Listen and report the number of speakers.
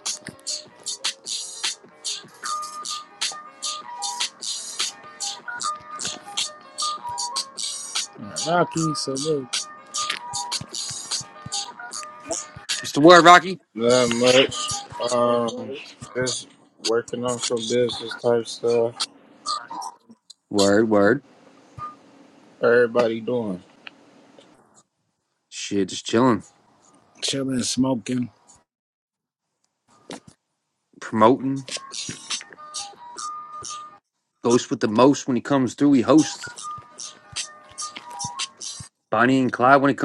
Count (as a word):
three